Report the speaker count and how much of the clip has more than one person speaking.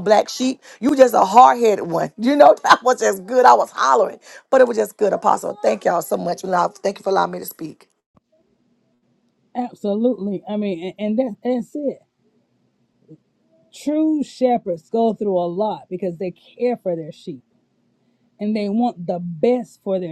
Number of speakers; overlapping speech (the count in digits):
2, no overlap